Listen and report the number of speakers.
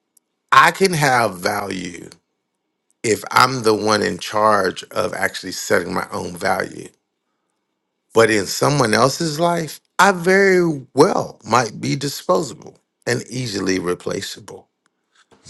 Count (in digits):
1